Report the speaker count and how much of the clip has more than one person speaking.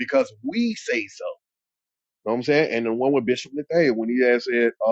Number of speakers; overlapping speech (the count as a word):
one, no overlap